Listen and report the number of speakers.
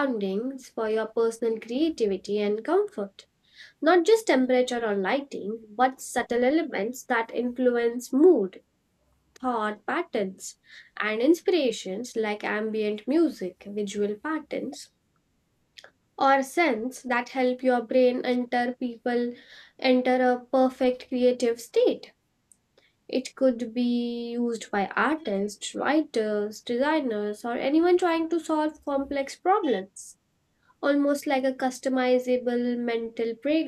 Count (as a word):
one